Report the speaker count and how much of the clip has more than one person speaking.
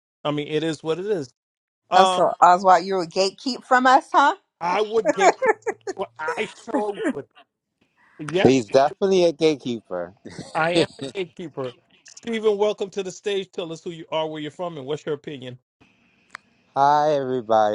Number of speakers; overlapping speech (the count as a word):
three, about 2%